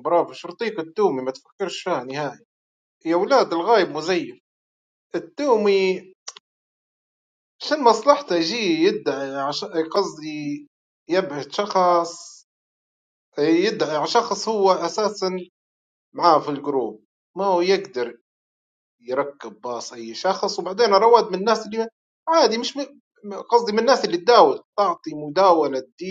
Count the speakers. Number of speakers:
1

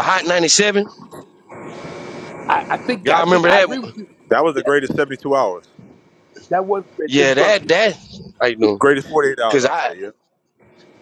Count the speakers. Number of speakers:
3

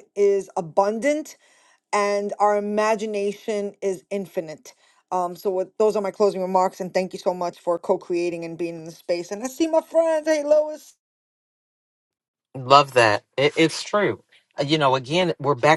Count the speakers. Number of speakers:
2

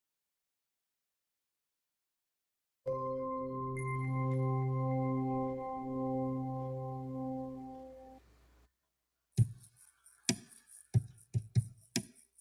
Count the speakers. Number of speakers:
0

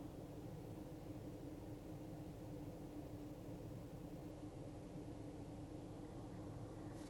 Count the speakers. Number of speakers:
0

